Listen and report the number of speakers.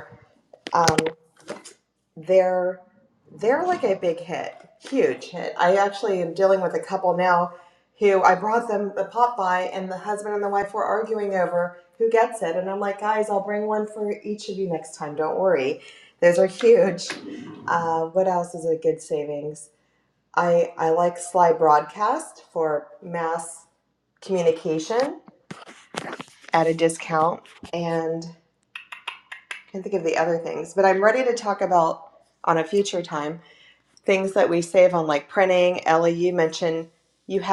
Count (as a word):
one